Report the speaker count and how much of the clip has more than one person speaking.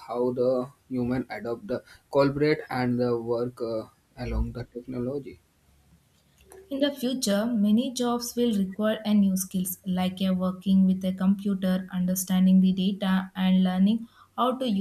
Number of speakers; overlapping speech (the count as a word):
two, no overlap